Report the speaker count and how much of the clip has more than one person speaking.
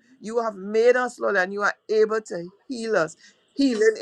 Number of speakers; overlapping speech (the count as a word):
one, no overlap